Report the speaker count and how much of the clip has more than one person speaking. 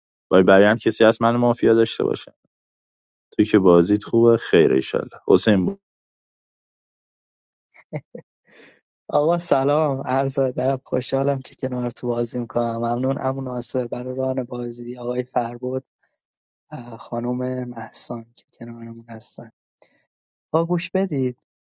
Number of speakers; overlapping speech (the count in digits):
2, no overlap